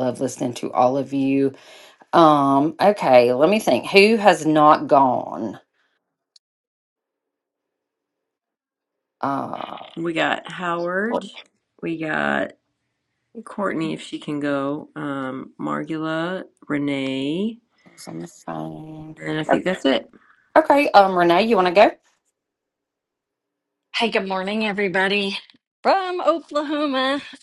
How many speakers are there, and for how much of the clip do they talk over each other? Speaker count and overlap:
3, about 1%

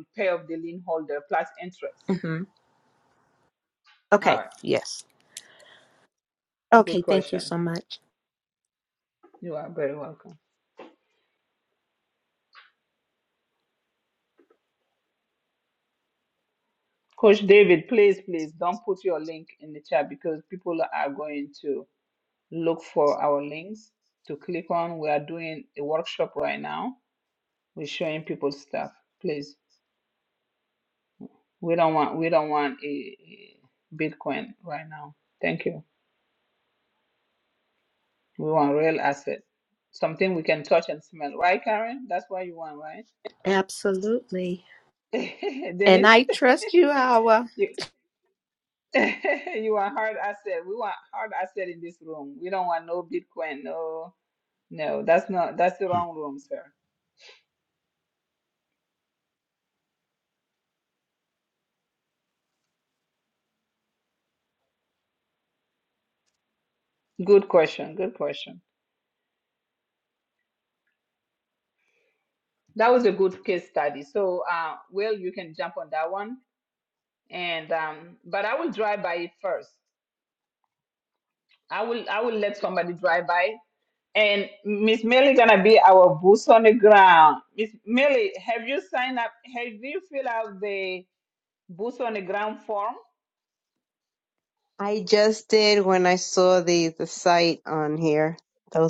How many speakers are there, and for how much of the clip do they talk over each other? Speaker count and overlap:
3, about 1%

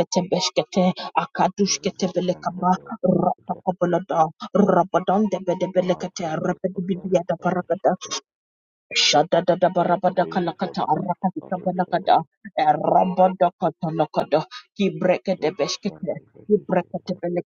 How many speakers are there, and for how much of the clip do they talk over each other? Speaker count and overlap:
2, about 31%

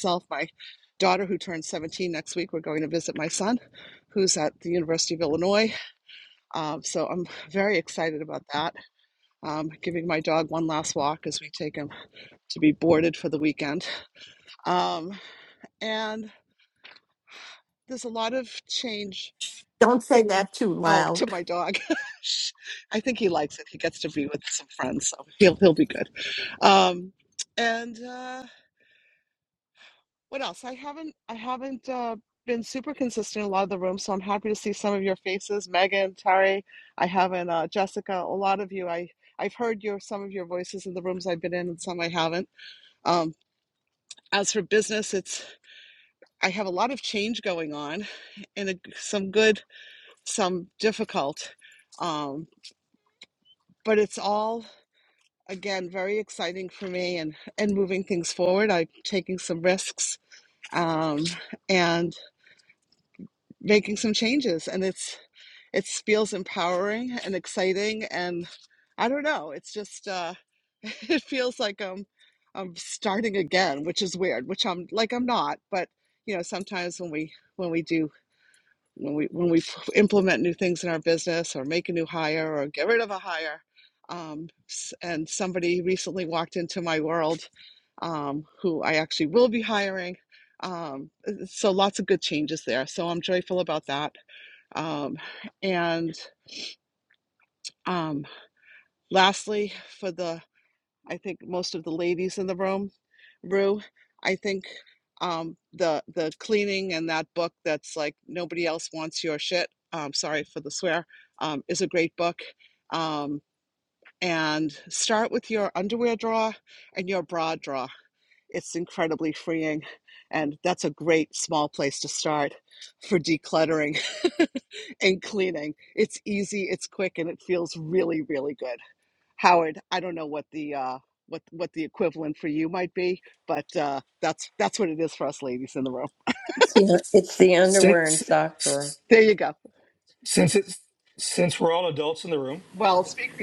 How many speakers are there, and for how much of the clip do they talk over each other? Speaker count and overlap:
4, about 1%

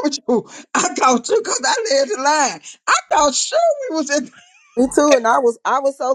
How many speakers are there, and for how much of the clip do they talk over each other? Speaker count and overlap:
2, no overlap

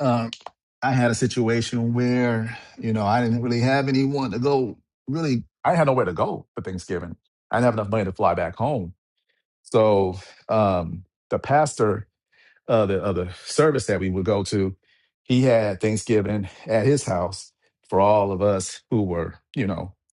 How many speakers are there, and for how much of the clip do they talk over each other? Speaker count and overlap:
1, no overlap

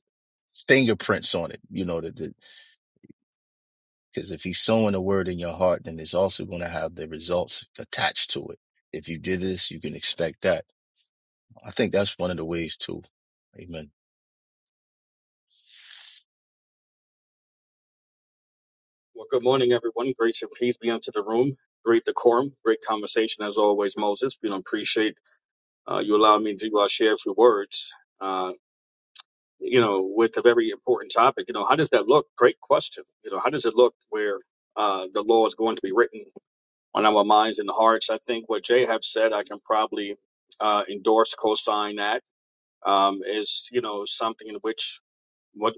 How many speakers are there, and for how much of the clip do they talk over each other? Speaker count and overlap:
2, no overlap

